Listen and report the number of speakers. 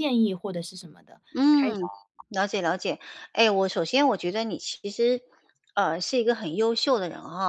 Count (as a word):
two